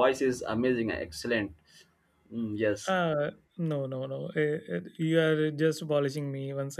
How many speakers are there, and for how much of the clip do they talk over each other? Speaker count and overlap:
2, about 1%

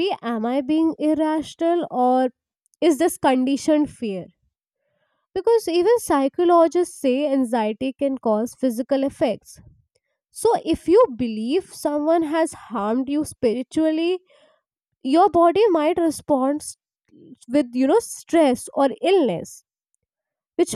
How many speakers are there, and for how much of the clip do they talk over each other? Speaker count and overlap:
1, no overlap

